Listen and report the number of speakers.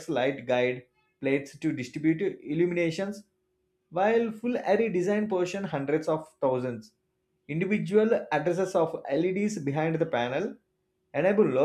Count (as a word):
one